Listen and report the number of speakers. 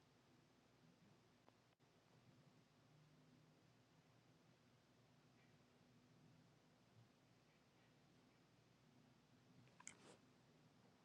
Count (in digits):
0